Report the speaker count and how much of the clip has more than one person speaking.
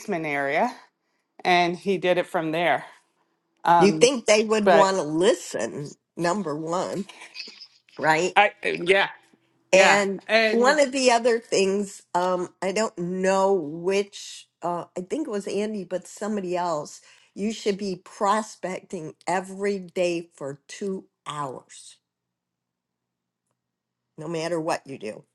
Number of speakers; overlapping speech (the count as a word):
two, about 5%